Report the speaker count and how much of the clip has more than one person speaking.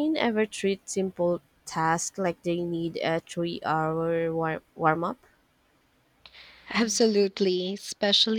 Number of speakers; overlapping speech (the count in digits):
2, no overlap